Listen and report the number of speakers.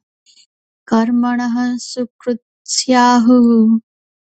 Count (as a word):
one